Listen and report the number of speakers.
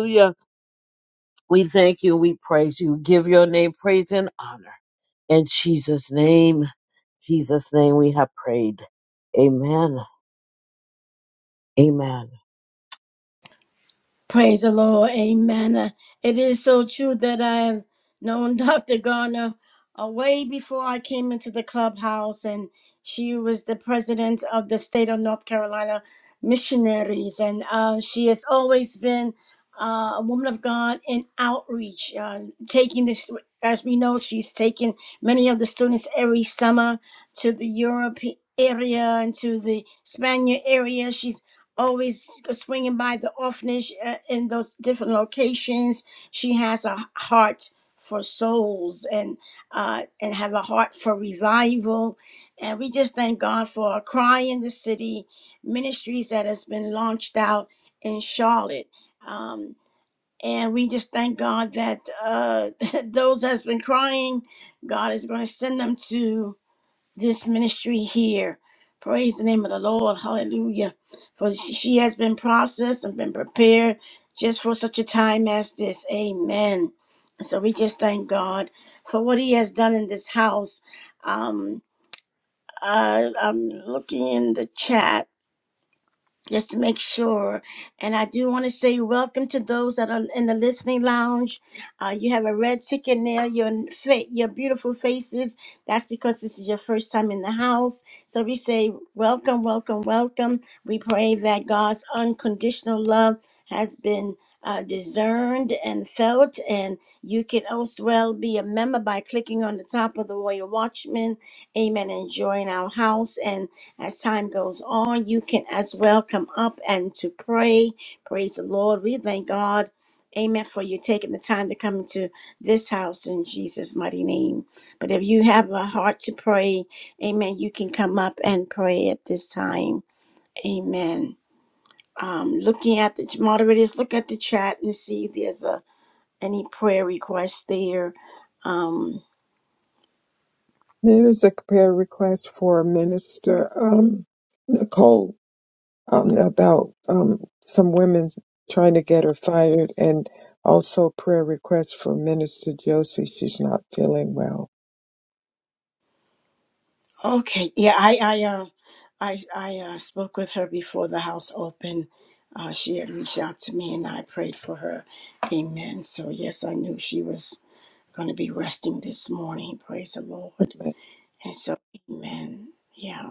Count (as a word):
three